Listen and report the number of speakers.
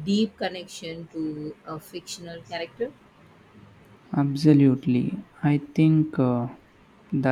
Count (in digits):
2